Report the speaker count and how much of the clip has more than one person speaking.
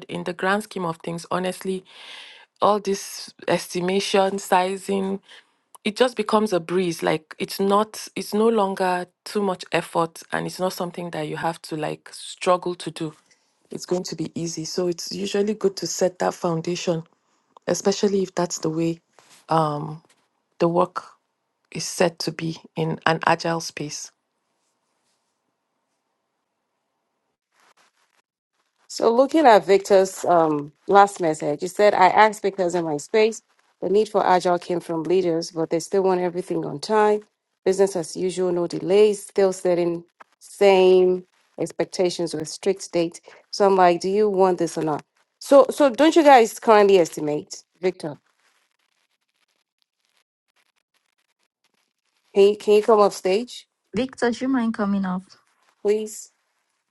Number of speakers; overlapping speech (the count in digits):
3, no overlap